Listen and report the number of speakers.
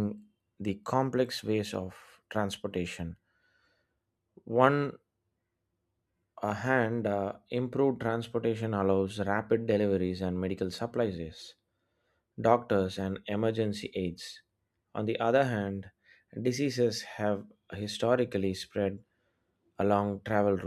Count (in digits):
1